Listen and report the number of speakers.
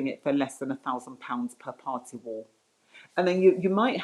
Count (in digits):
1